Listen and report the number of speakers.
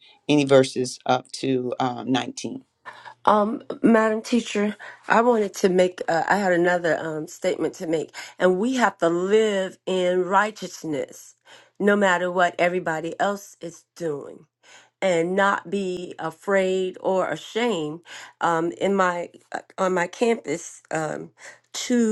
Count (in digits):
2